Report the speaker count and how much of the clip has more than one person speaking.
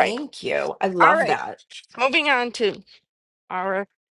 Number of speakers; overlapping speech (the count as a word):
two, about 14%